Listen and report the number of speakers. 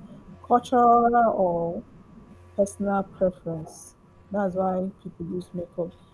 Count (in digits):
1